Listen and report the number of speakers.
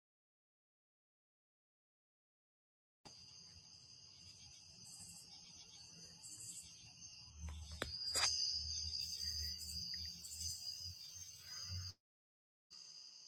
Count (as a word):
zero